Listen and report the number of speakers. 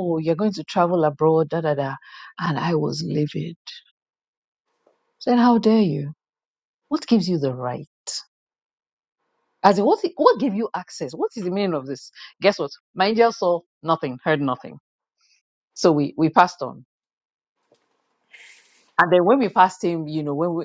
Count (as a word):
one